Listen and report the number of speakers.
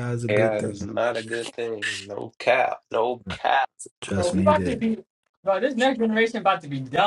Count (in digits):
3